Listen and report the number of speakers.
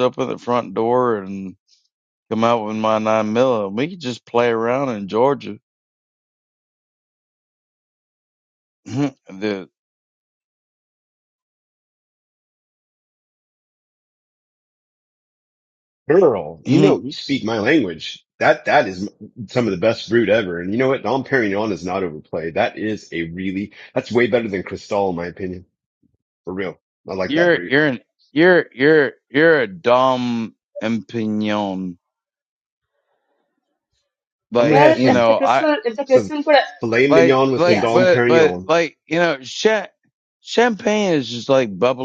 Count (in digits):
3